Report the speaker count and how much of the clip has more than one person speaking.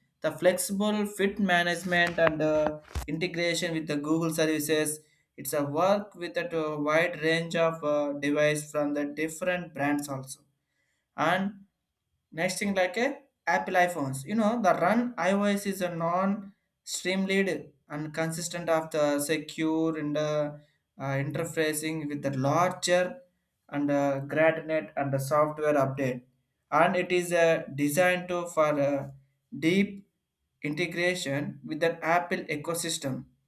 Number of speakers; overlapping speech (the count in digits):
1, no overlap